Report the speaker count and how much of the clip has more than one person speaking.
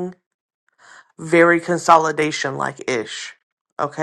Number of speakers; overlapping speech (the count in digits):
1, no overlap